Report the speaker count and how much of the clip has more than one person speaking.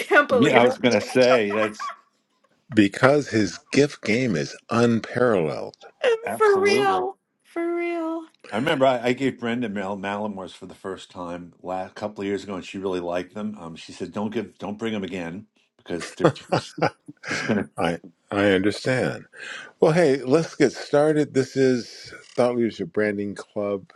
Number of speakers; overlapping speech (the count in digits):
3, about 5%